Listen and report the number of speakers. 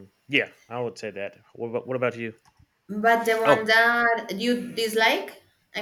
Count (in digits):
2